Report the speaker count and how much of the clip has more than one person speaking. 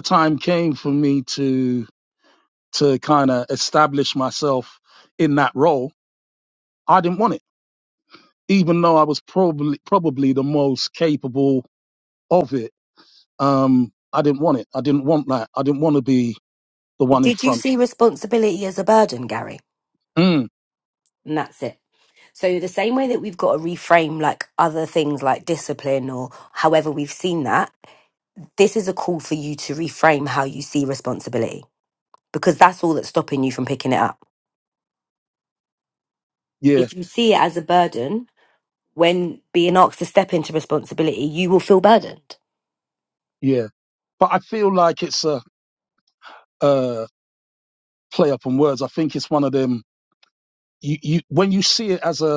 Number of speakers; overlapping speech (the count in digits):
2, about 1%